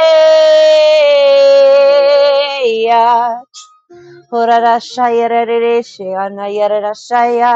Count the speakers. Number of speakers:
one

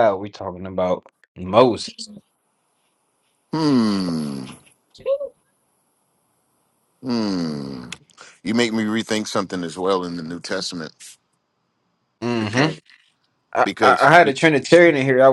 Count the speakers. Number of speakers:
two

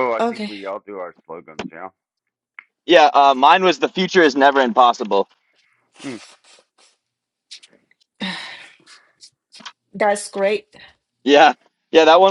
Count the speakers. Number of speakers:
three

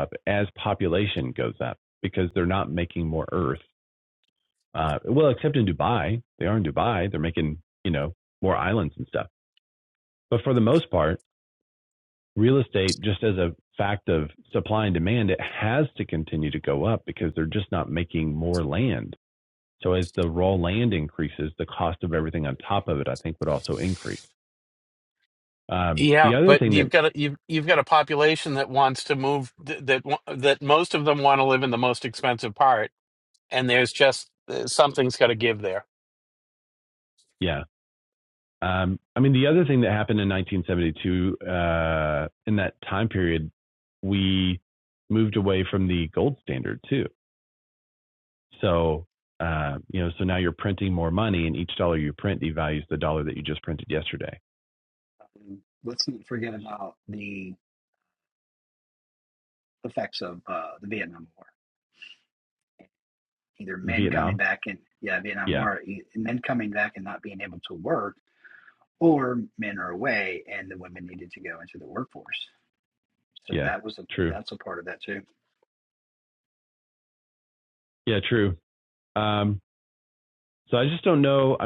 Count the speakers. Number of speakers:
three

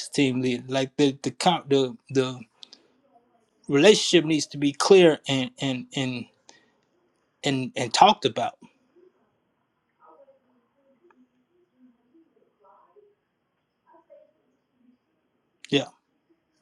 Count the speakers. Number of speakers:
one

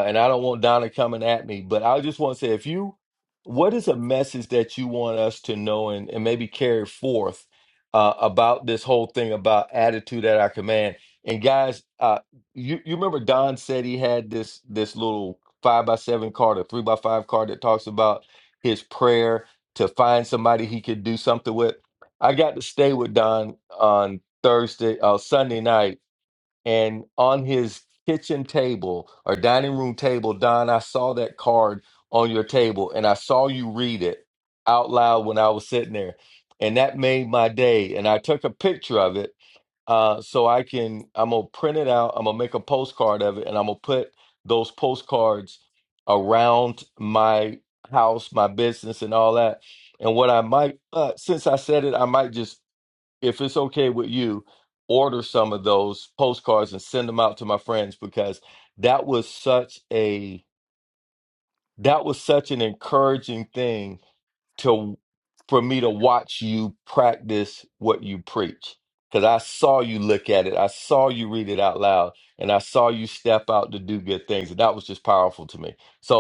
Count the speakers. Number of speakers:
one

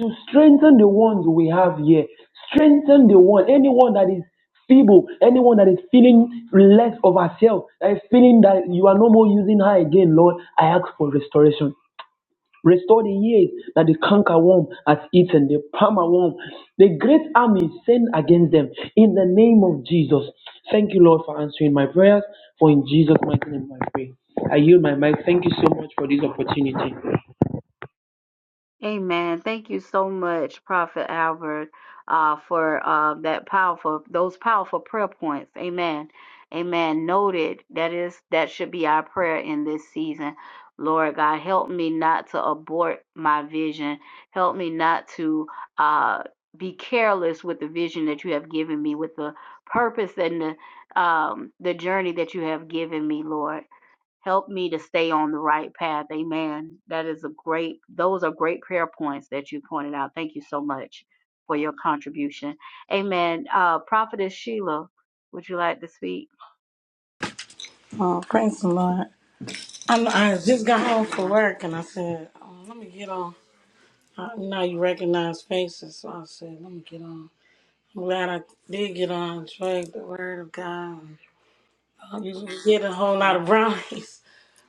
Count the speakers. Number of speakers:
three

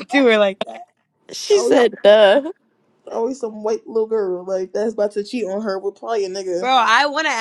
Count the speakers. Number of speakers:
three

